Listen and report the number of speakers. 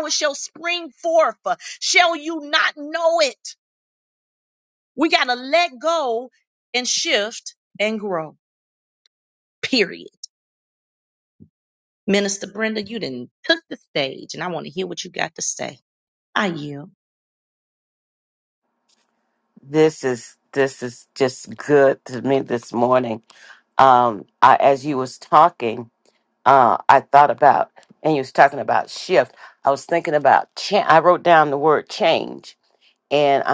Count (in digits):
2